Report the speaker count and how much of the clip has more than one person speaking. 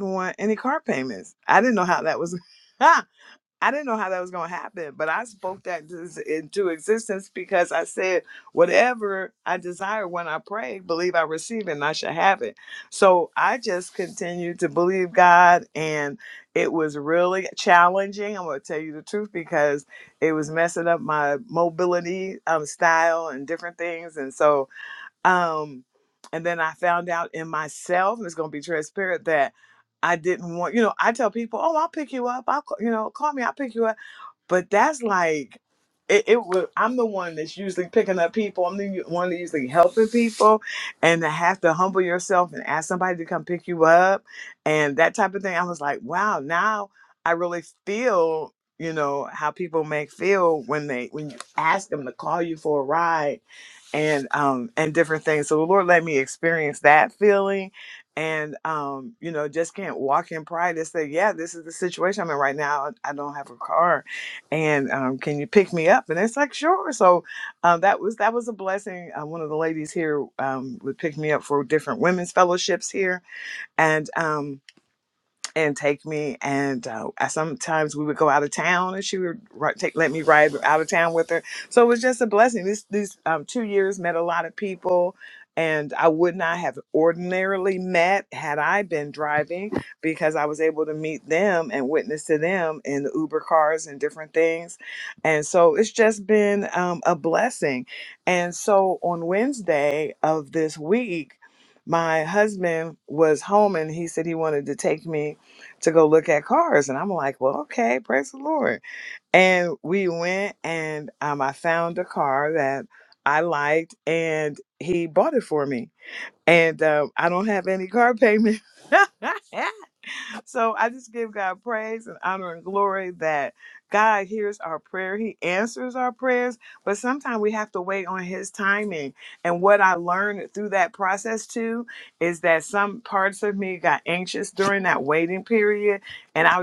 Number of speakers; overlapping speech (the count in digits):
1, no overlap